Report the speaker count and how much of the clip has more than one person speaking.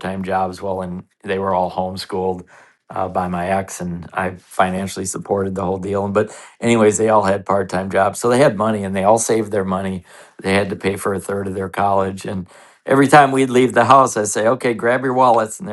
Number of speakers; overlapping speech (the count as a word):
one, no overlap